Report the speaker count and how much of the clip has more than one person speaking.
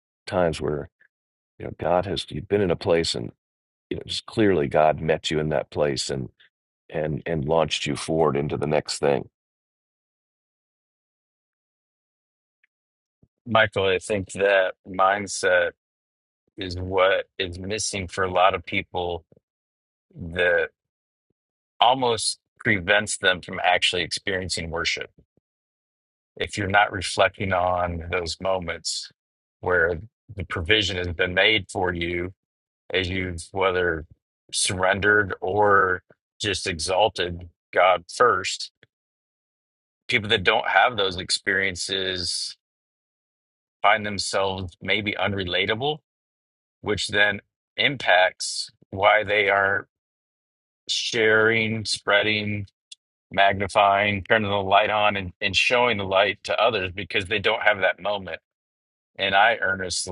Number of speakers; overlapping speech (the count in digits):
2, no overlap